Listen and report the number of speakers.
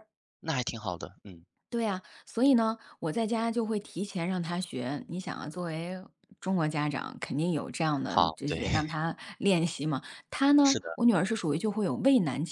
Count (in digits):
2